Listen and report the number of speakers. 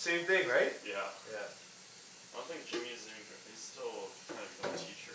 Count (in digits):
2